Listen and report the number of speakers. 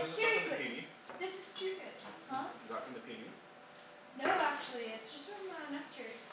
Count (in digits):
2